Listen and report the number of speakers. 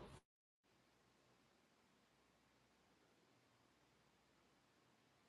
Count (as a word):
zero